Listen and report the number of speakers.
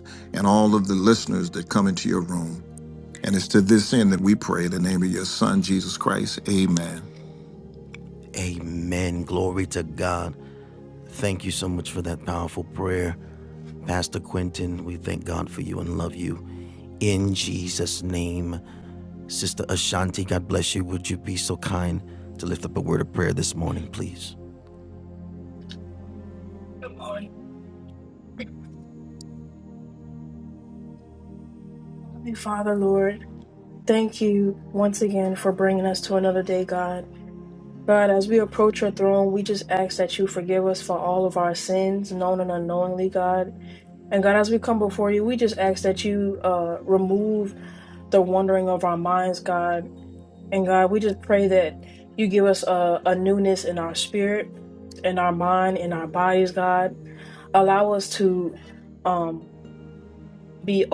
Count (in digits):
3